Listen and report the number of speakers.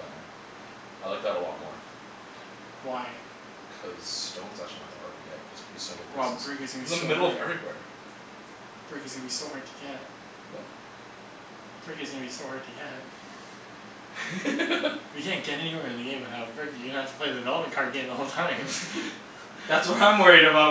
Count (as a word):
three